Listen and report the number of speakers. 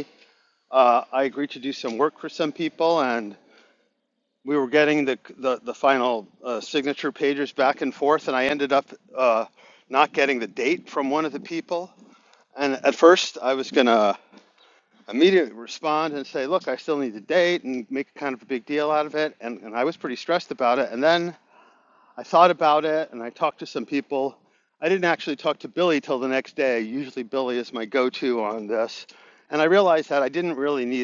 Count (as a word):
one